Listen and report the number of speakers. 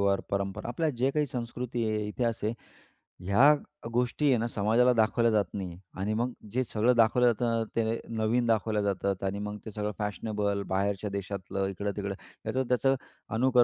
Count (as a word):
one